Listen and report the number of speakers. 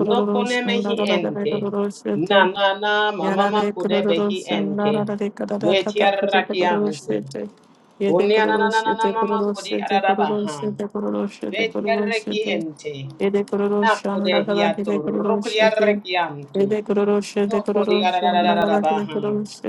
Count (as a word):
two